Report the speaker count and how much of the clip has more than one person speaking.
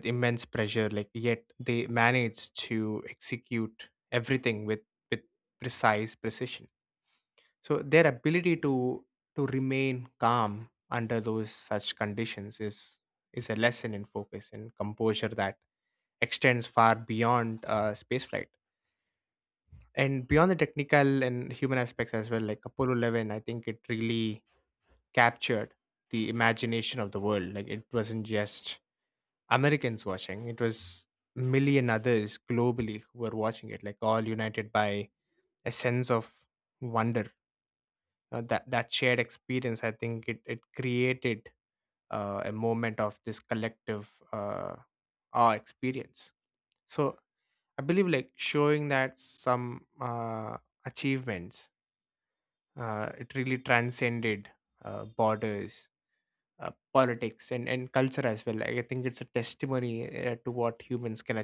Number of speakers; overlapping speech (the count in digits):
1, no overlap